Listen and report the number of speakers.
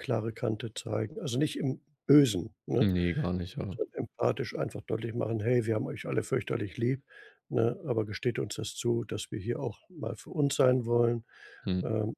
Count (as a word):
two